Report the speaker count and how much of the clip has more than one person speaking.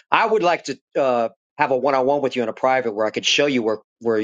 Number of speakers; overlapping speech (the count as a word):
one, no overlap